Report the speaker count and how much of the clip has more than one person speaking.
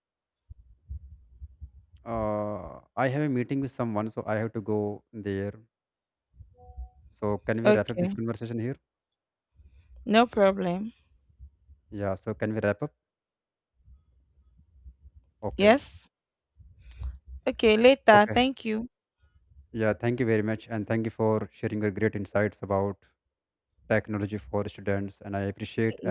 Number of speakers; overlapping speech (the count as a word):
two, about 4%